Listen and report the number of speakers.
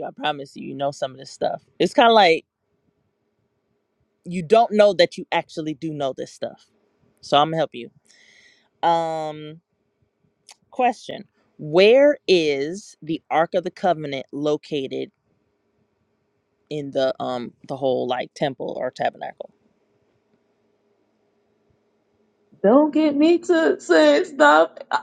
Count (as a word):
two